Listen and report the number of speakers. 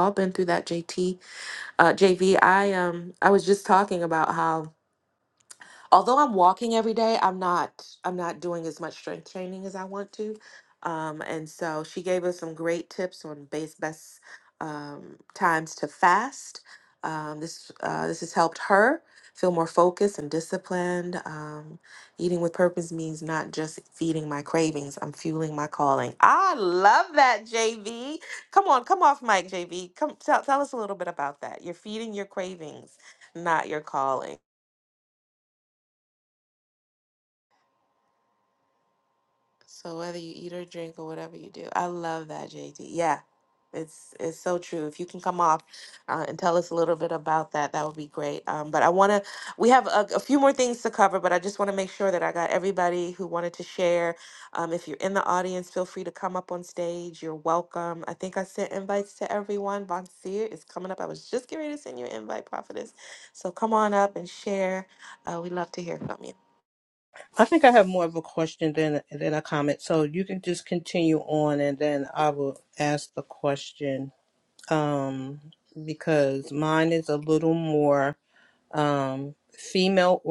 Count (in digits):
2